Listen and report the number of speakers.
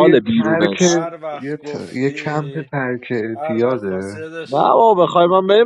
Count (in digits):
3